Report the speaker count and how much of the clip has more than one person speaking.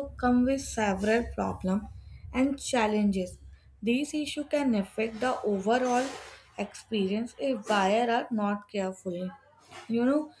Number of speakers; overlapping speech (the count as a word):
one, no overlap